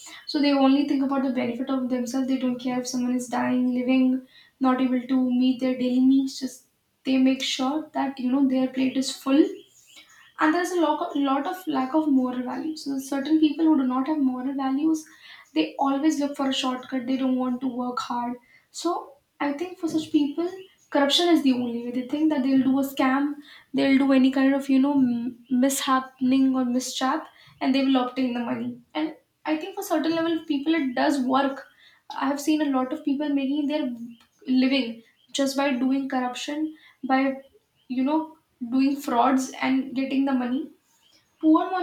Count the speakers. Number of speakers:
one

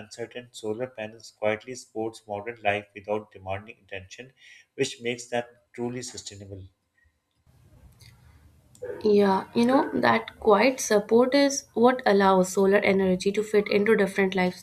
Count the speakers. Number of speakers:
two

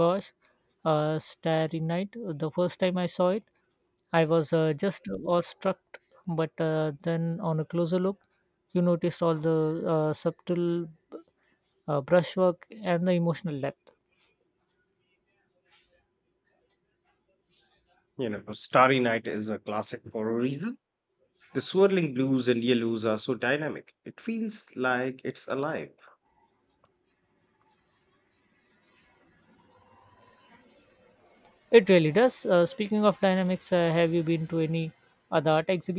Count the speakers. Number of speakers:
two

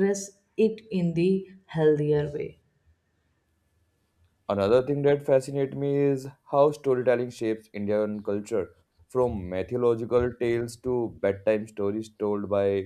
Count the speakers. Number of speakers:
two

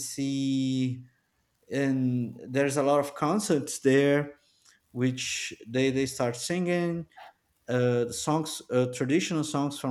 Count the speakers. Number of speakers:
one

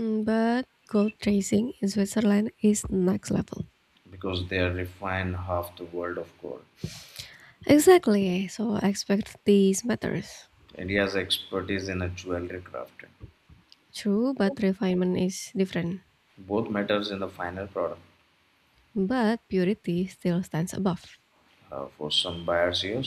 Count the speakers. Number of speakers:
two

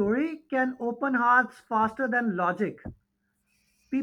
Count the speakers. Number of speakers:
one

